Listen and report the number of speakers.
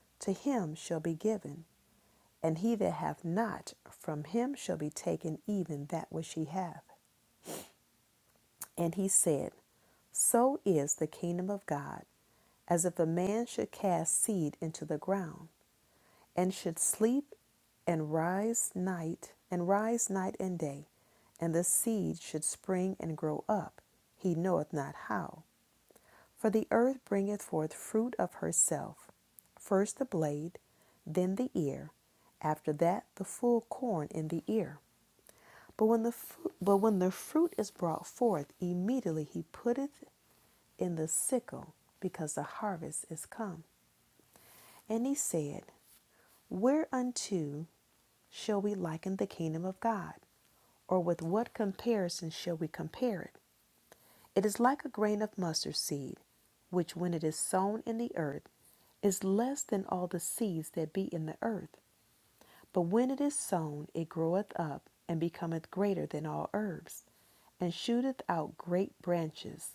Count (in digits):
1